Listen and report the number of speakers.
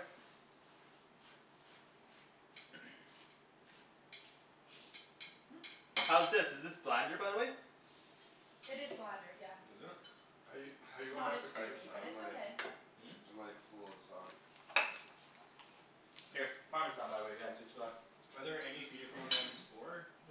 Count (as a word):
four